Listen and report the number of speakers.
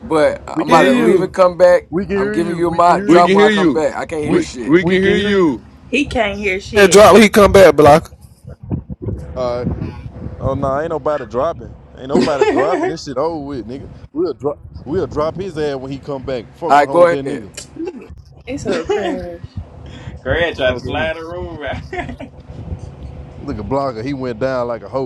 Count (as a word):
six